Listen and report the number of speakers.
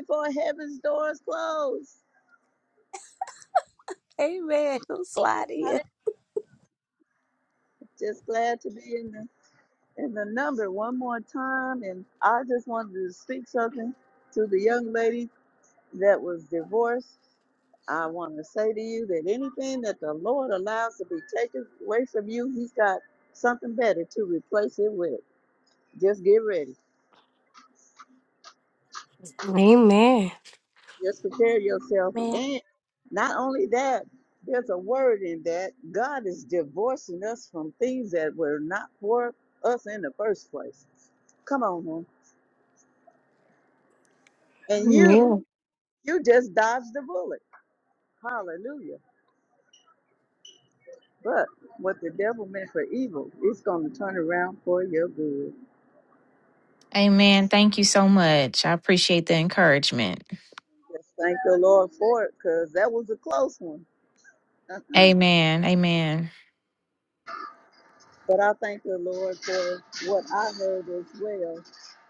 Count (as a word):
four